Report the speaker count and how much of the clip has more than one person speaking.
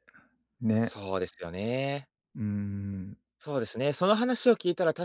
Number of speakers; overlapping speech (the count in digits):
2, under 1%